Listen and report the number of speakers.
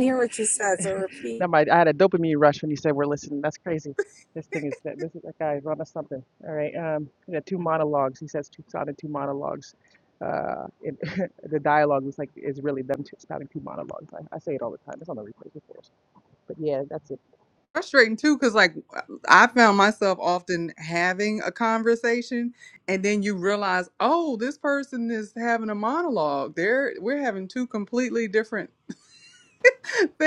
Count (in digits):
3